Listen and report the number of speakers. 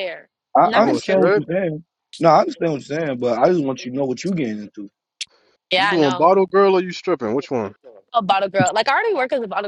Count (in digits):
3